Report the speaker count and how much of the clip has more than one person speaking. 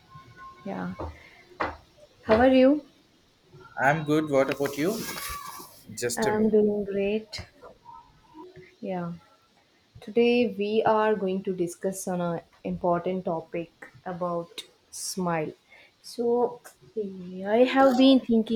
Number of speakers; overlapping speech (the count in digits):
2, about 2%